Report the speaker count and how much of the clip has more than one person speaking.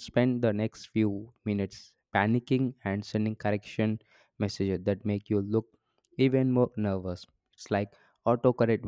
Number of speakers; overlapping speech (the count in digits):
1, no overlap